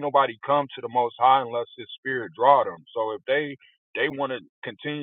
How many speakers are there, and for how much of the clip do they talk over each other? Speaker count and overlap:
1, no overlap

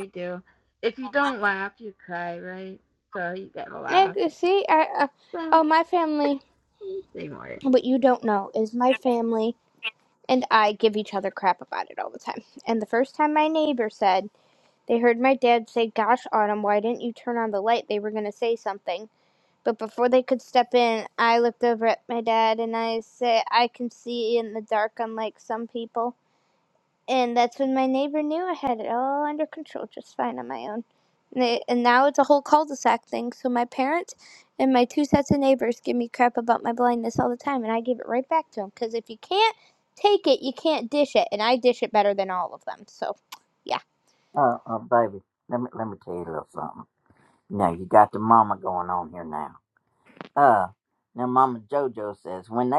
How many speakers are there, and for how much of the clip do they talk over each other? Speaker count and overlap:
3, under 1%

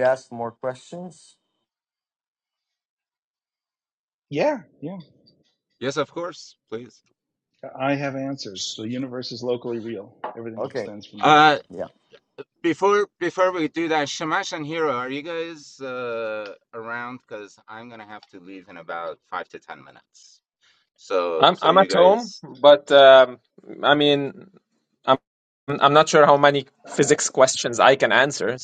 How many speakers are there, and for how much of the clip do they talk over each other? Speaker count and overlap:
4, about 5%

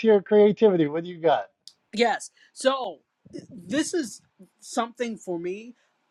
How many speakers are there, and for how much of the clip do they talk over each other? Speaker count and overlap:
2, no overlap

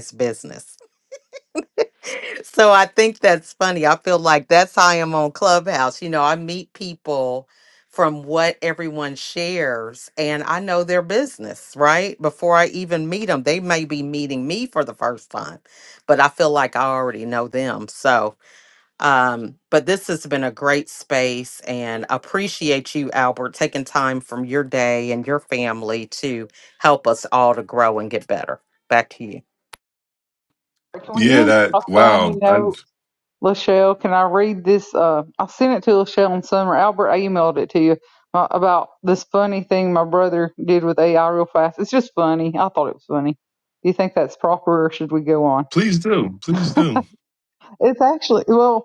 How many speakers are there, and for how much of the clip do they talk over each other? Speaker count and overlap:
3, about 3%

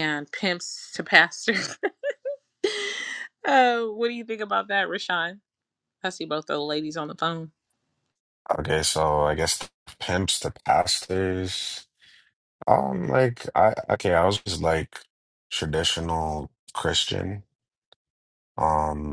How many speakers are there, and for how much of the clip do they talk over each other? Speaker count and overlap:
2, no overlap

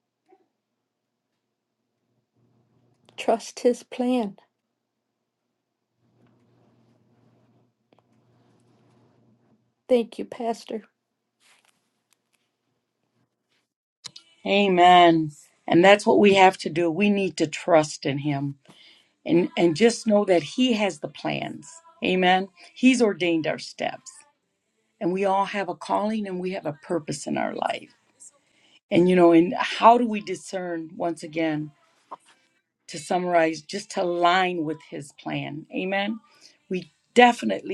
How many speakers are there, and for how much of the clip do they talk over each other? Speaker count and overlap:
2, no overlap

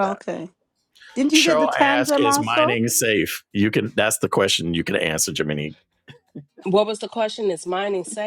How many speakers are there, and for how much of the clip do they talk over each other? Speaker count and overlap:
3, about 20%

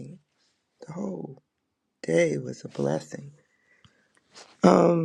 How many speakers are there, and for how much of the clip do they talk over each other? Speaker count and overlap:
1, no overlap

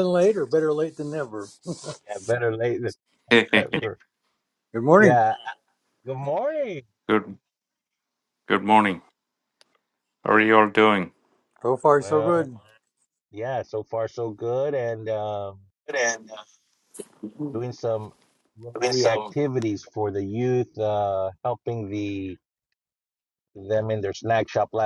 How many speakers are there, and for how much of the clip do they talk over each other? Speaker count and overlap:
3, about 6%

